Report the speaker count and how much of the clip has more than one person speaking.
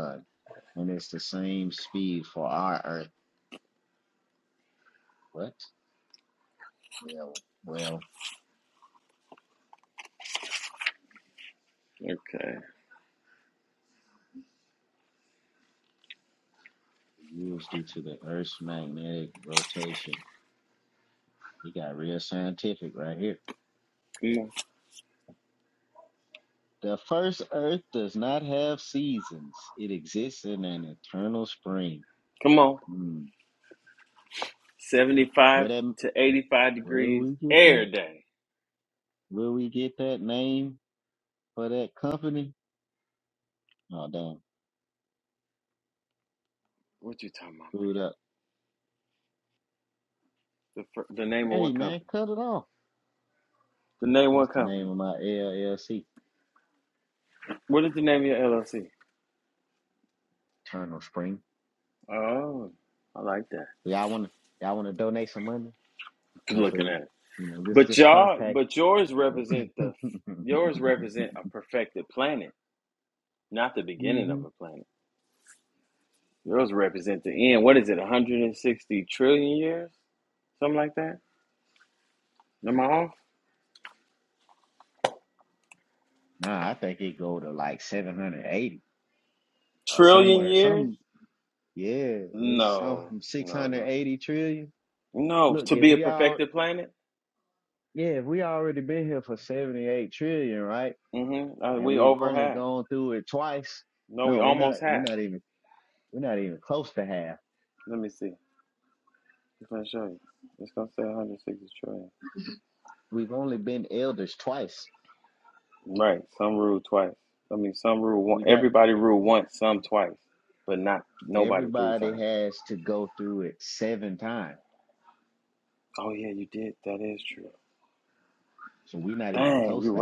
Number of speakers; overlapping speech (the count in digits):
2, about 8%